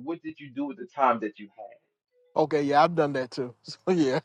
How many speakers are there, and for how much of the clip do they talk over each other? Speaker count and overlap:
two, no overlap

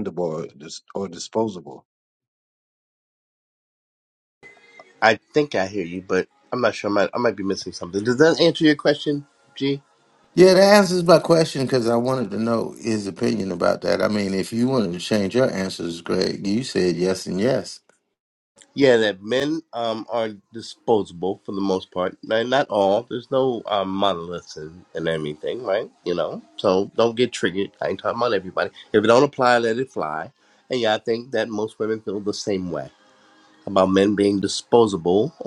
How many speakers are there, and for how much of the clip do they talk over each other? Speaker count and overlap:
three, no overlap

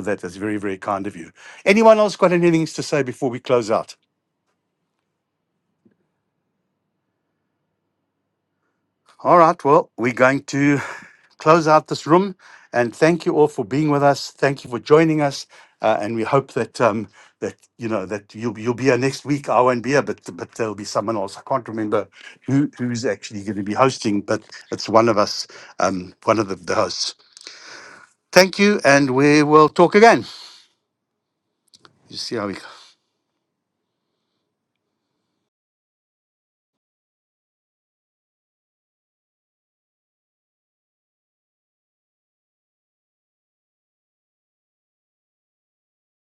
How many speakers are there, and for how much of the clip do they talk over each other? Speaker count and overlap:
one, no overlap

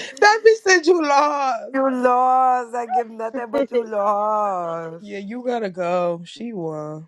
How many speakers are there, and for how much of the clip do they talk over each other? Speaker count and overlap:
two, no overlap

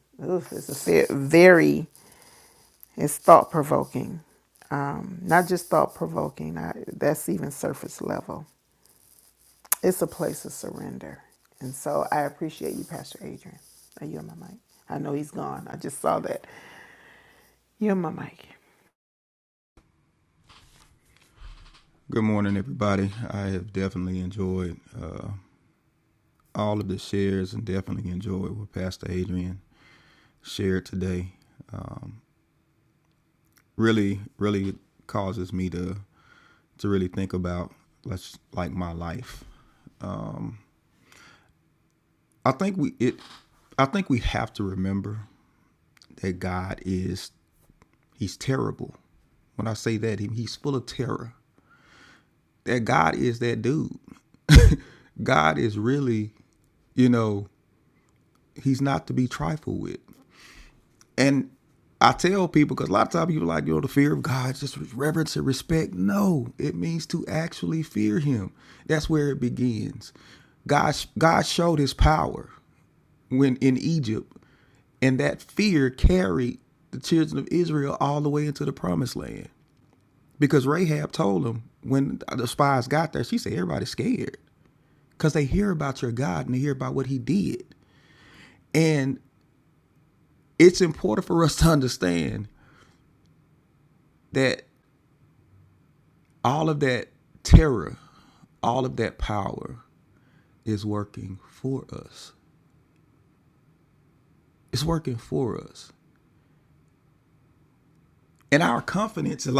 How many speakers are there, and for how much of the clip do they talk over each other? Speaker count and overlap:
two, no overlap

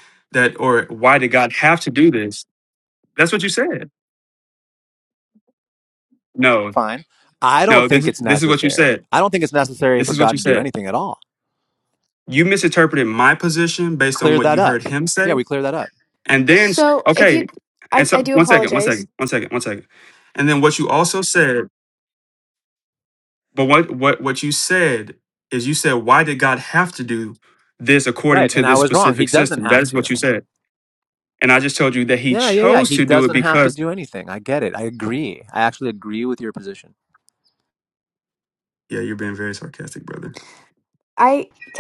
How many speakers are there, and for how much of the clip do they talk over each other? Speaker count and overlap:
three, about 19%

